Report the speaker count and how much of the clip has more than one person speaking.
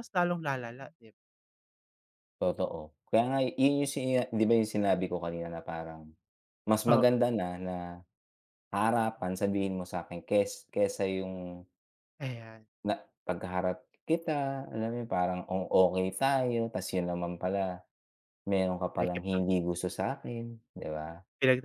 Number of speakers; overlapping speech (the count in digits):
2, about 3%